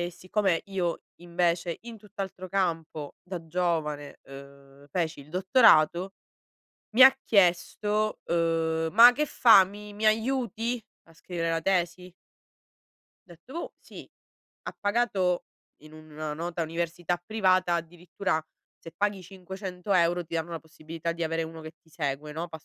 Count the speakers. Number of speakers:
one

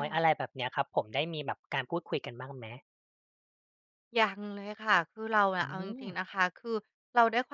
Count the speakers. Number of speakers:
two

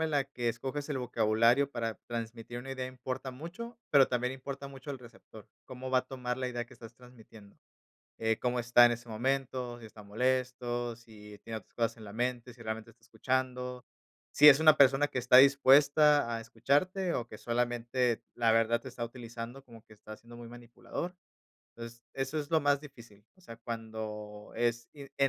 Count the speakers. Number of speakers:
one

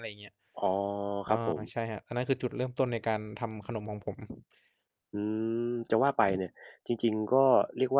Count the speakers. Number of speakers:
two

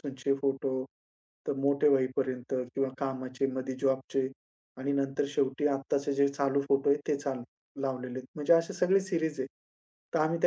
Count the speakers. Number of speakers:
one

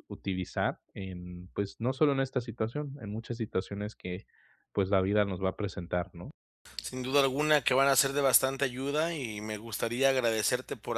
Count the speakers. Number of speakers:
two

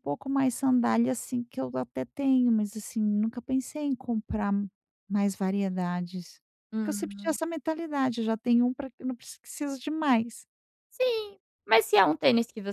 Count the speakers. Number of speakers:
two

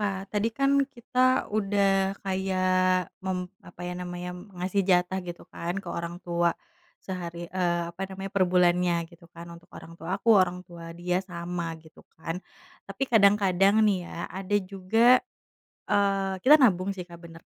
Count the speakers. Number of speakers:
one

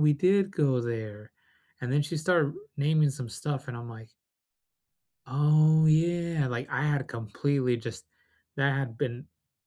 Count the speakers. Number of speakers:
one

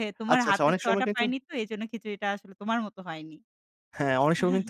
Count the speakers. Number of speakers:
two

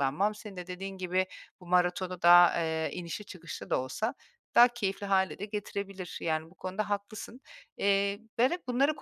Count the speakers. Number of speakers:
one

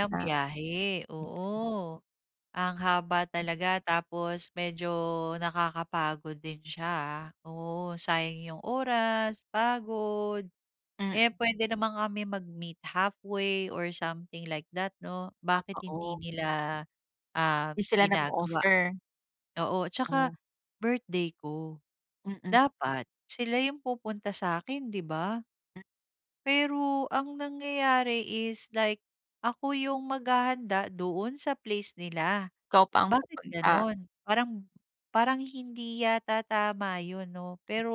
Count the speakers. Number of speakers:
two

